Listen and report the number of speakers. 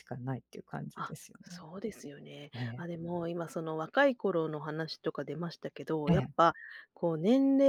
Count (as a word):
two